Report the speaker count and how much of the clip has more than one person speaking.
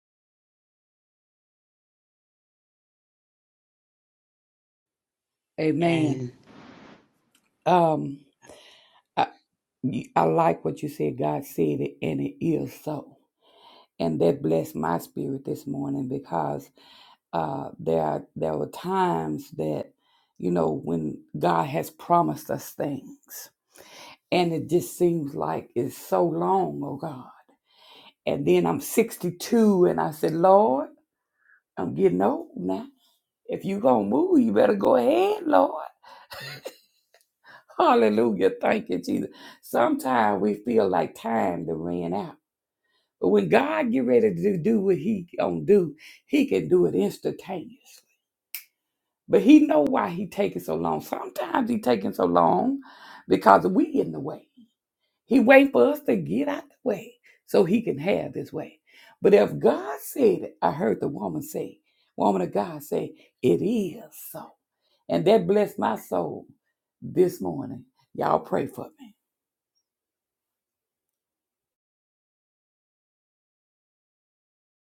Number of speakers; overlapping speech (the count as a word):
one, no overlap